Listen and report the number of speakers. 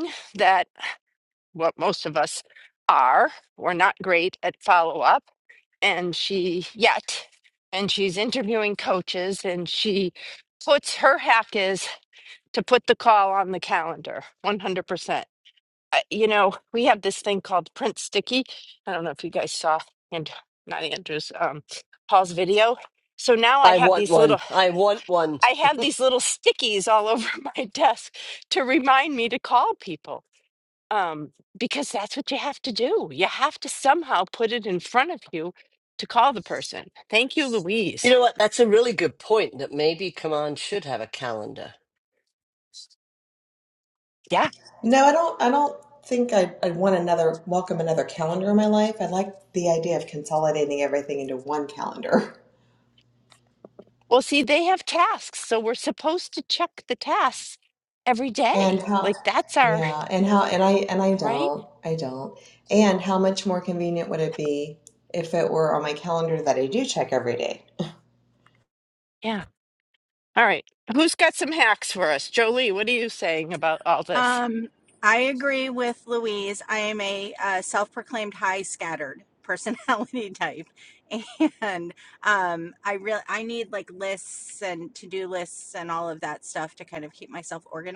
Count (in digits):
4